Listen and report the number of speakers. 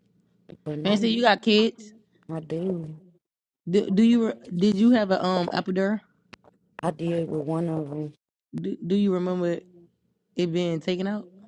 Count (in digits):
2